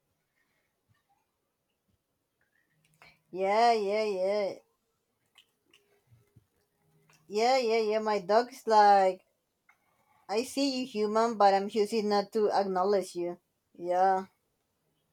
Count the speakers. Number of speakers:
1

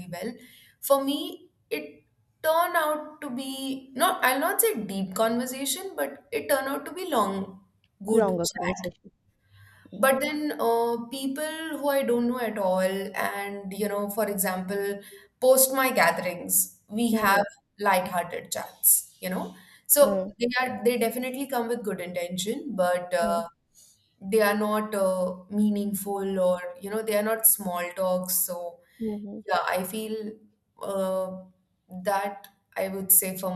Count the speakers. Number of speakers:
2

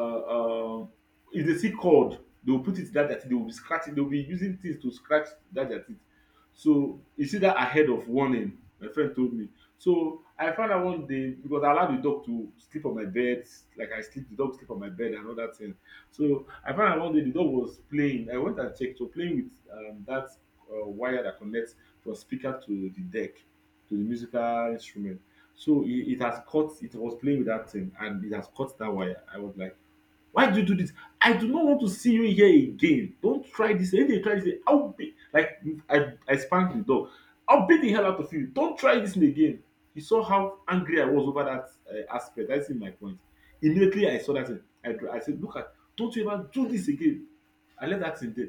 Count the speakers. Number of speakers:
1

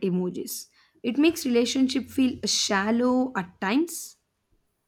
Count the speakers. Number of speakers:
1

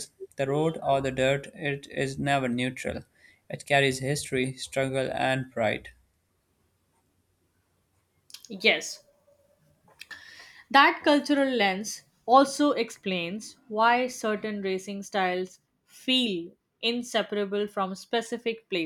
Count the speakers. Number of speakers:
2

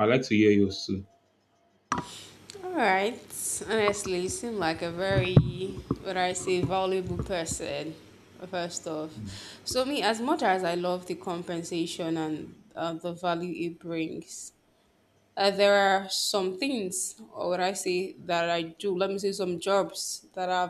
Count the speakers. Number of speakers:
2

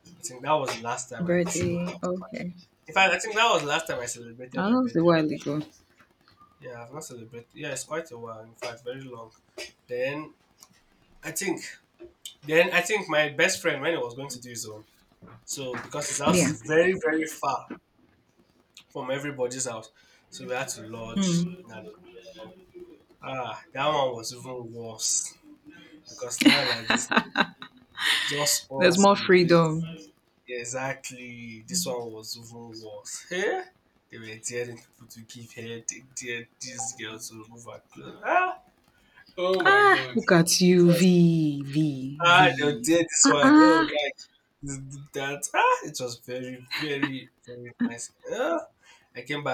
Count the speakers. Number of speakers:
2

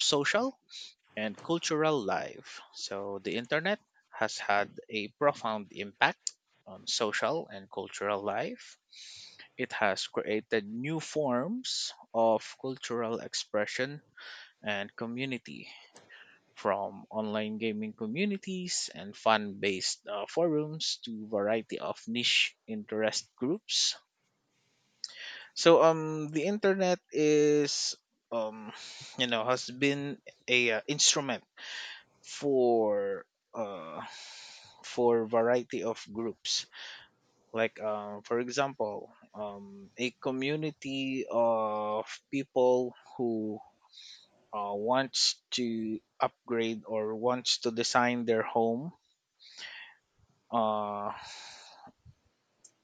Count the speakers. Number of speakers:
1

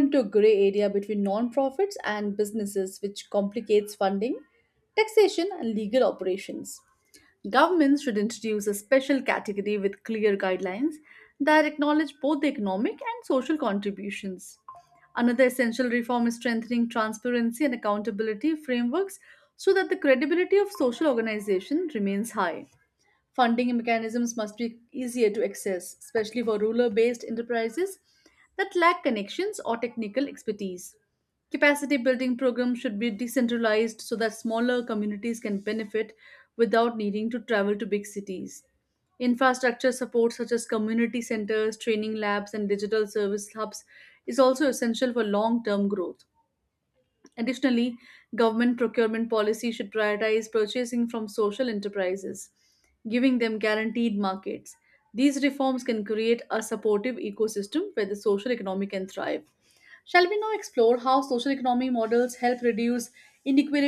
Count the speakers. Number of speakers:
1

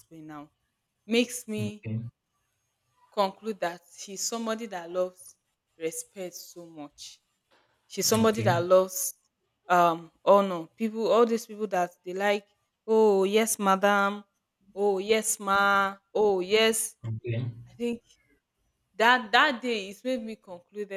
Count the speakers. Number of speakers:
2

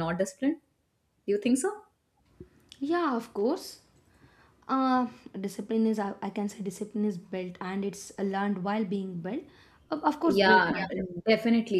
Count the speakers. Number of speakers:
2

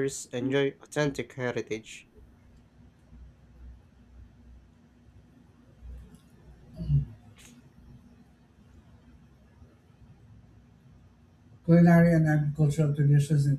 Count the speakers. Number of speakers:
2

